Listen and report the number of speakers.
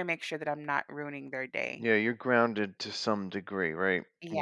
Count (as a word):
two